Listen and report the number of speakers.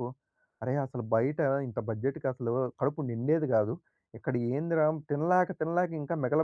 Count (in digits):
1